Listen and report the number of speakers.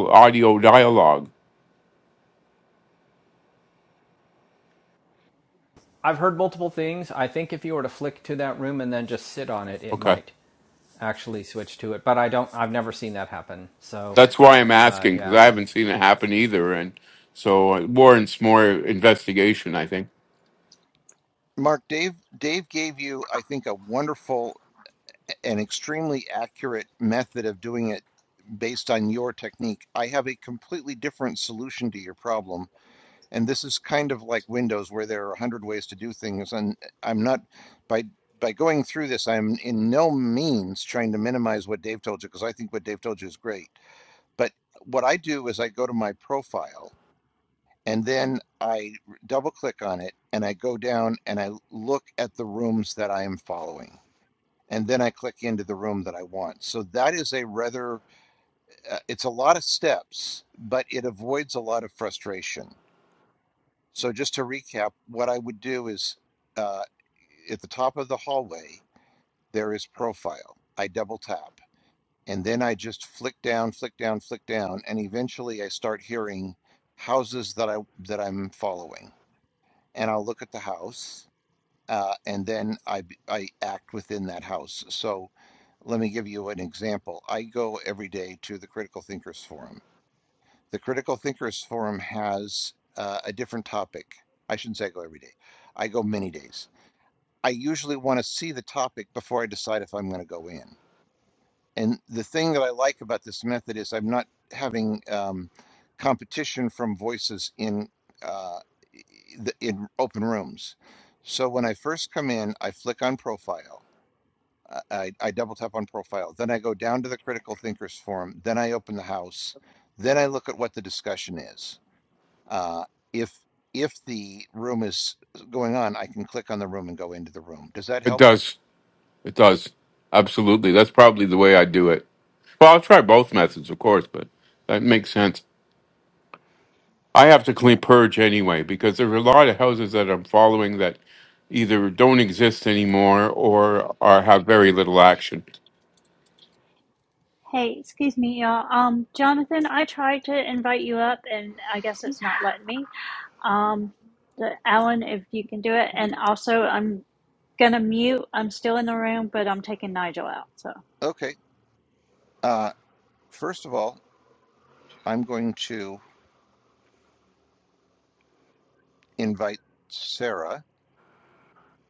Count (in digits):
4